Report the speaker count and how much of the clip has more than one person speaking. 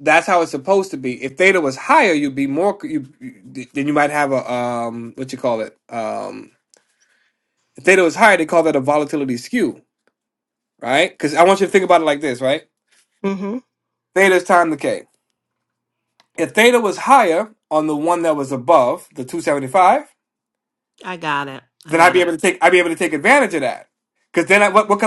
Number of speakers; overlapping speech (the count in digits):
2, about 1%